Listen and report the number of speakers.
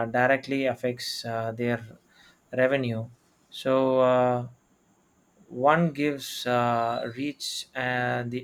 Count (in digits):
1